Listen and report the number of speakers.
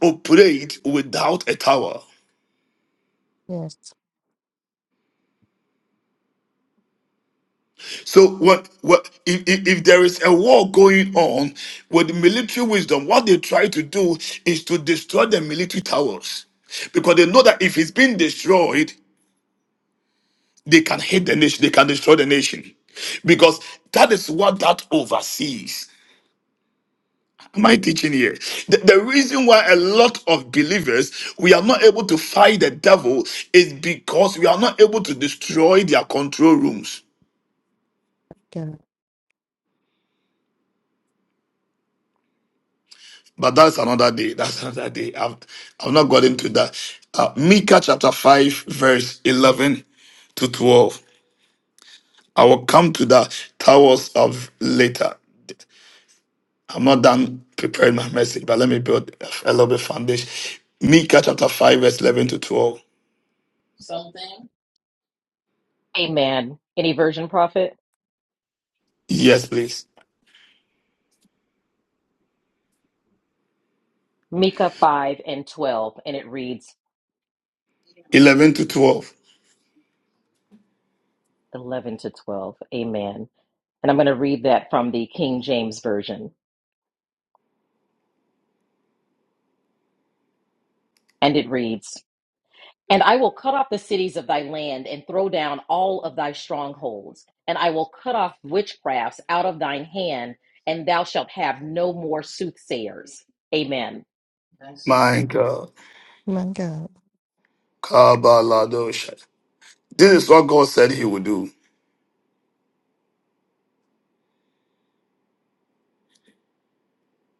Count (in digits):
3